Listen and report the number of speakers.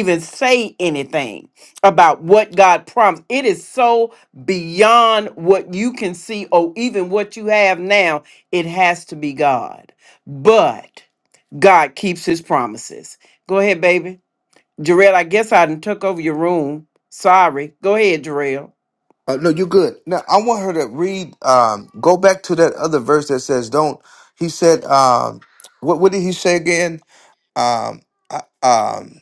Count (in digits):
2